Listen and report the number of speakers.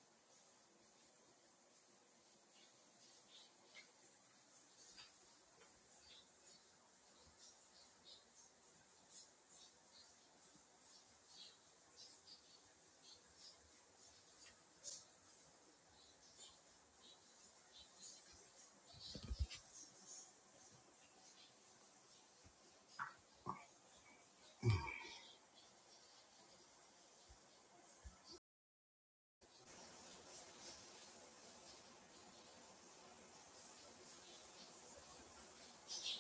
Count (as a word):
zero